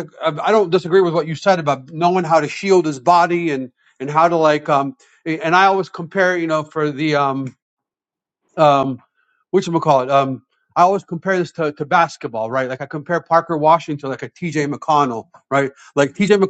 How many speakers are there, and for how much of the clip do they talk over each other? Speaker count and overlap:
one, no overlap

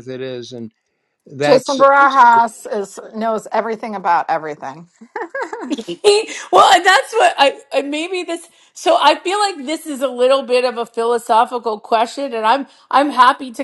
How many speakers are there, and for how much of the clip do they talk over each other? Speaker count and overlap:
three, about 3%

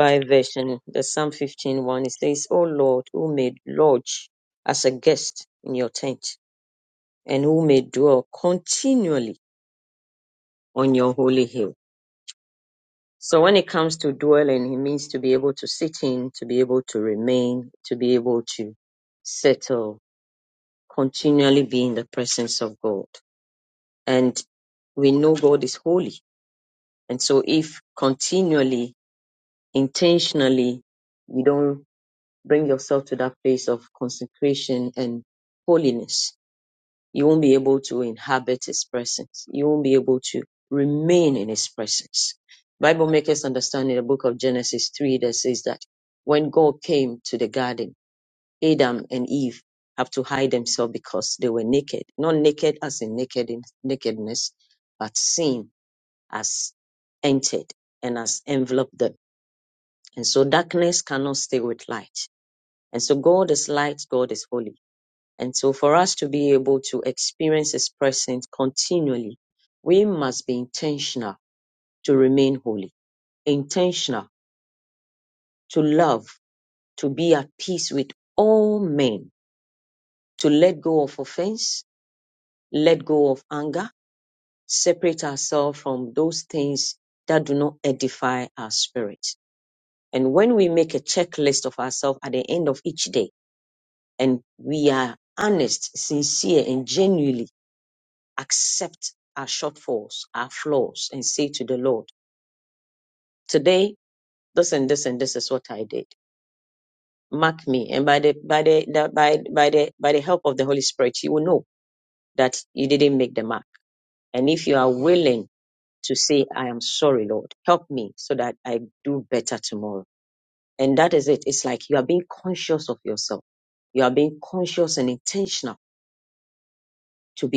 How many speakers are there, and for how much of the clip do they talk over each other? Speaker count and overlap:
one, no overlap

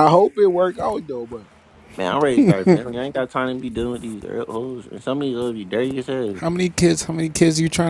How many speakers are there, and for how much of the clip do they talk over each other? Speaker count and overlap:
three, about 1%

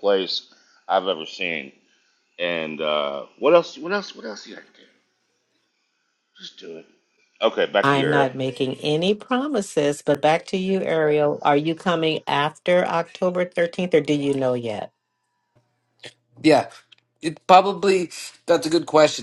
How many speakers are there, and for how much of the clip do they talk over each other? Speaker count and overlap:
three, about 2%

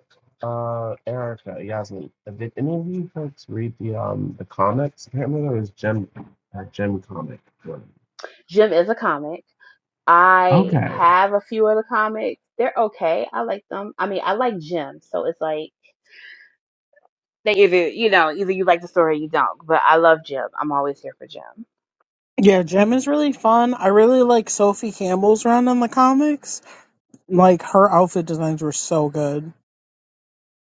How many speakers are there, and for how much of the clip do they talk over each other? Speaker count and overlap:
three, about 2%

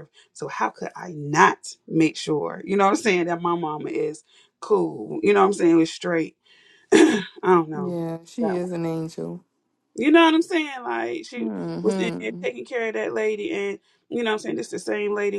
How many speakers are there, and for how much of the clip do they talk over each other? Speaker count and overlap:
two, about 6%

